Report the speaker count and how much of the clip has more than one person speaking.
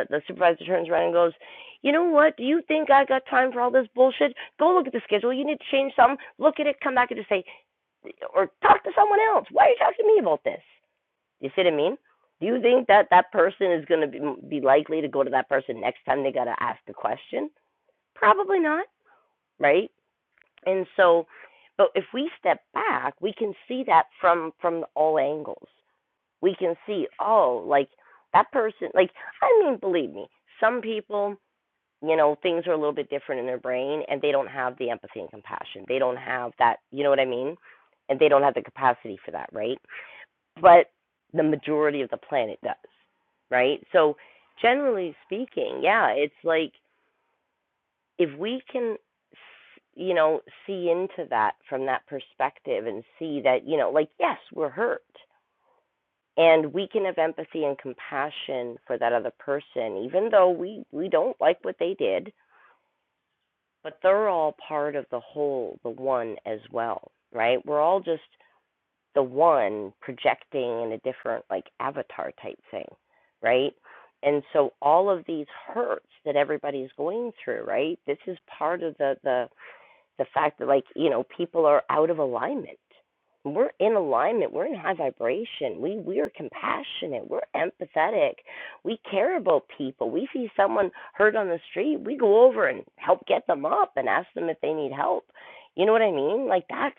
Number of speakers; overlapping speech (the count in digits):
1, no overlap